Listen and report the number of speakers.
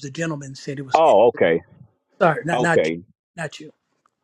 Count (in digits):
2